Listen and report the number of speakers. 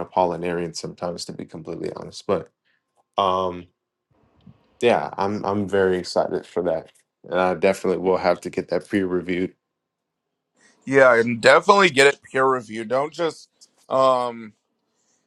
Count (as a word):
two